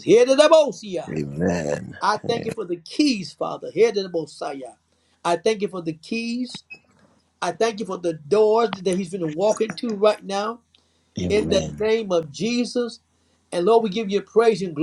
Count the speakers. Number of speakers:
2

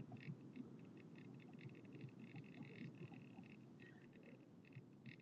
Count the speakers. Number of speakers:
0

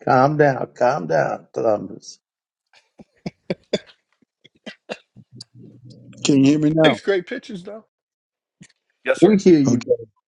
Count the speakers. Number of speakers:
3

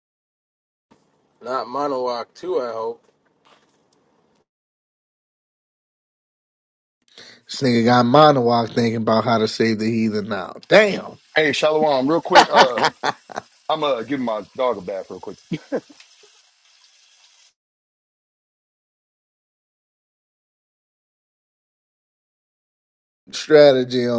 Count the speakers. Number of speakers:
3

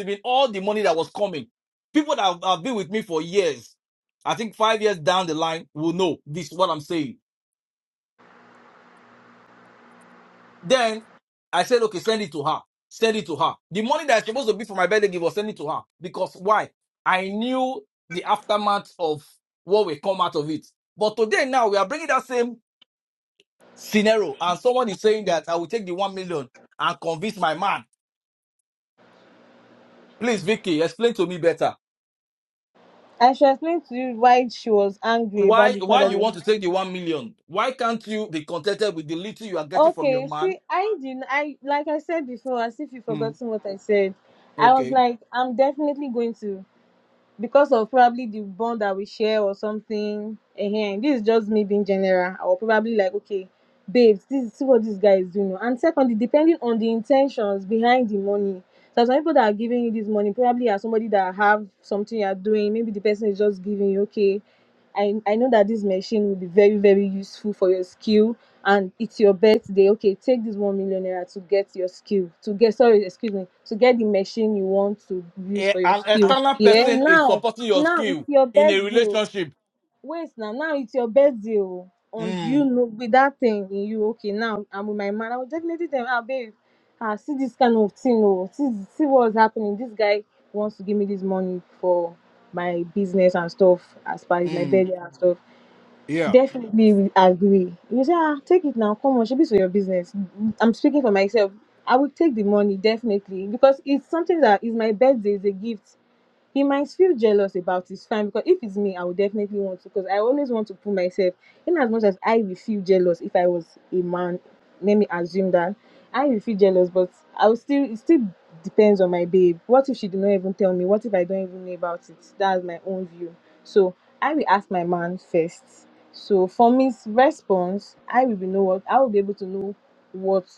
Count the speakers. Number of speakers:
2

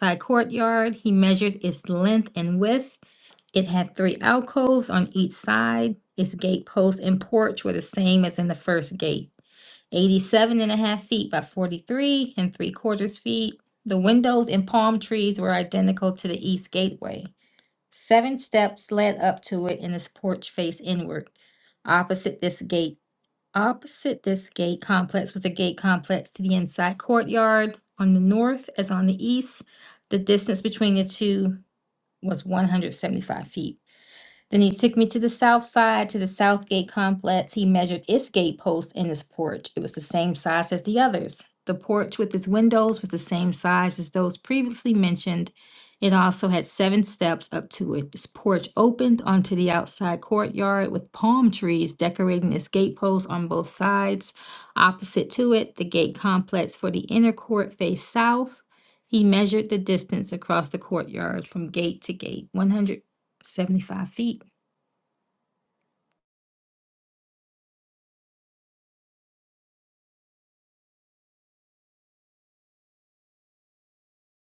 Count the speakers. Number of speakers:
1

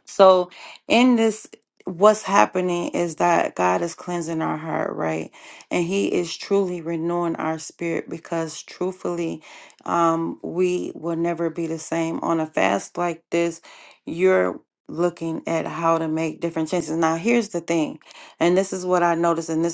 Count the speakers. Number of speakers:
1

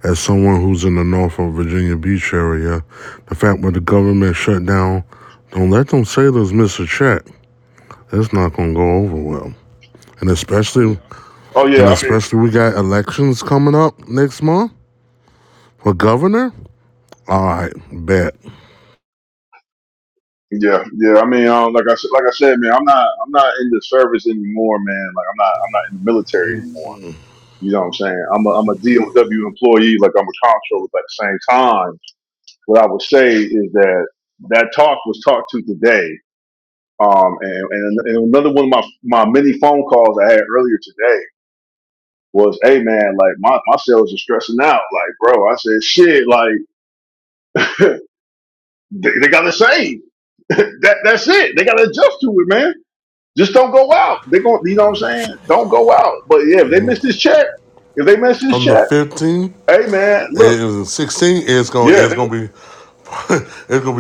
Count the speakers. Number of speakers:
2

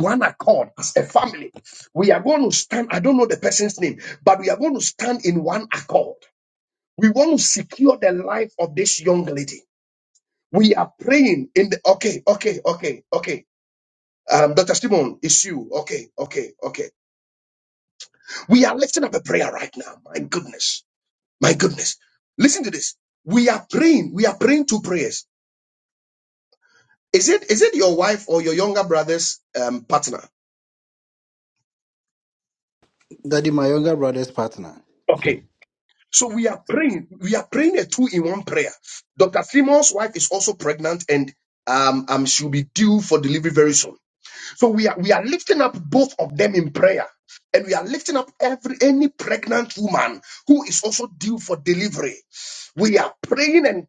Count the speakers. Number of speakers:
2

